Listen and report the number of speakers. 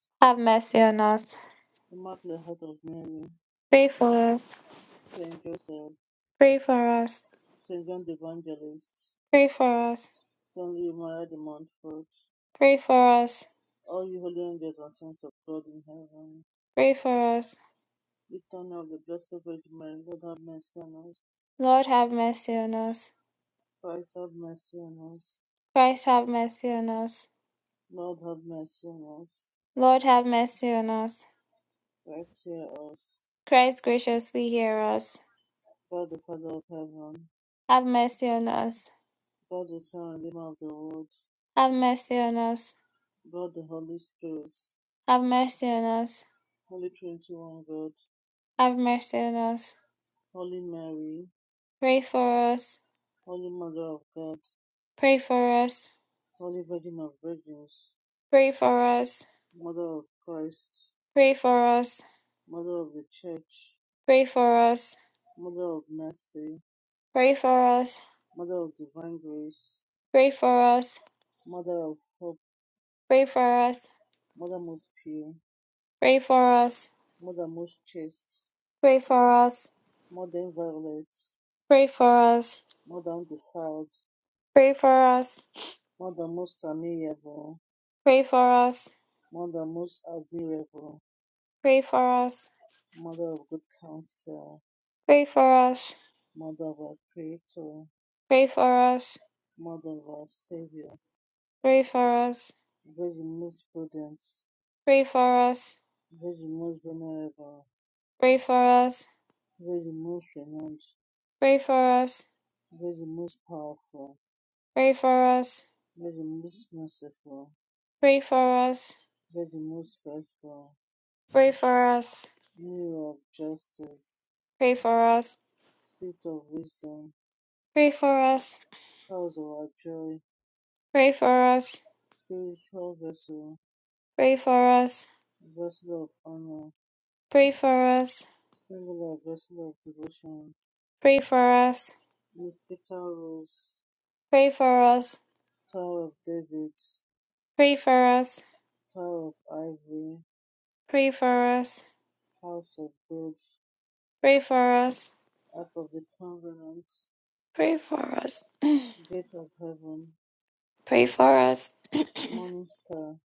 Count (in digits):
2